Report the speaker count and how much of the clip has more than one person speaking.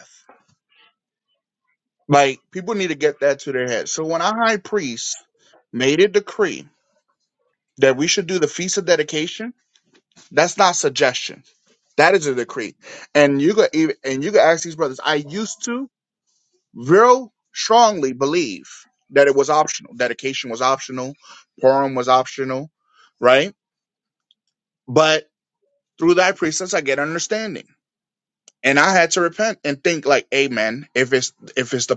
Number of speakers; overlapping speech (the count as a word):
one, no overlap